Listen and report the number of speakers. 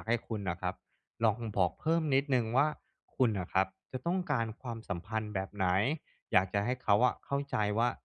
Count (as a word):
one